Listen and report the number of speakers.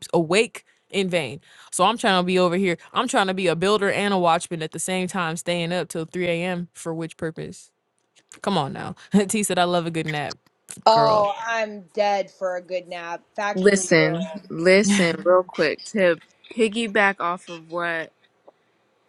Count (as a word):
three